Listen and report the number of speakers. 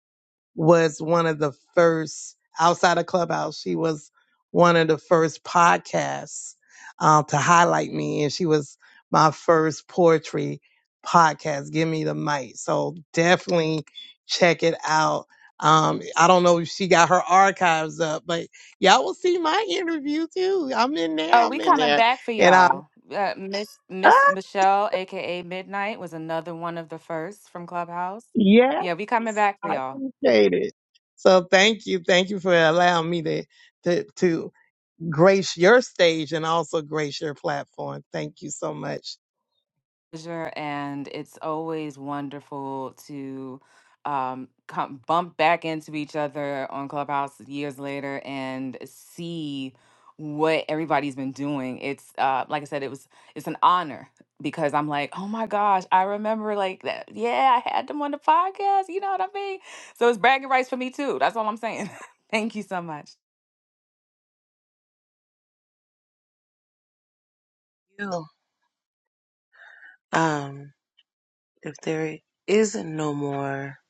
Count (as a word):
three